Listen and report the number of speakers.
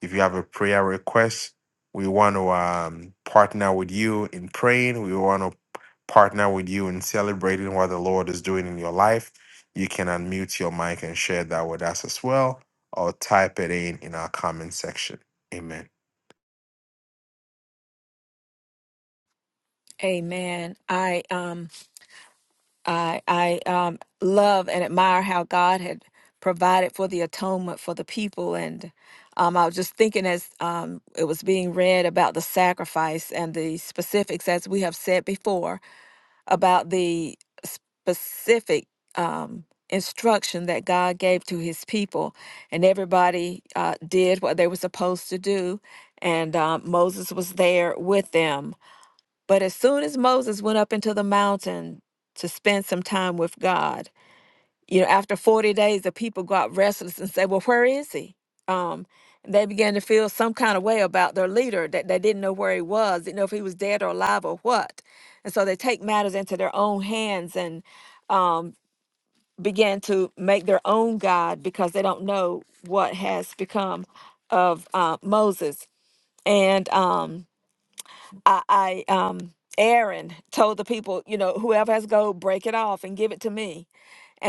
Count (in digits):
2